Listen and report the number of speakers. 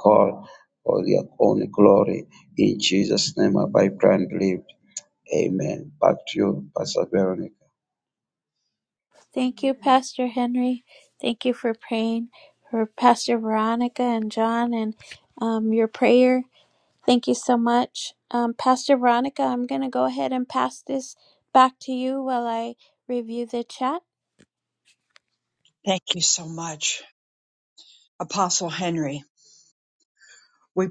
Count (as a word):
three